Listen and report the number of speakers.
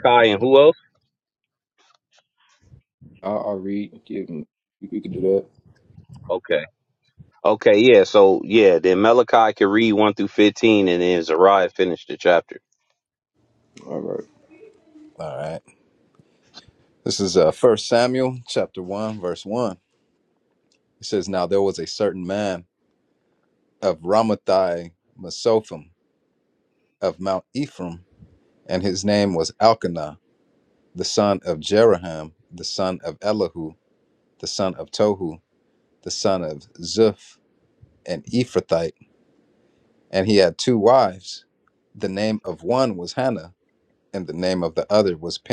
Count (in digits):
3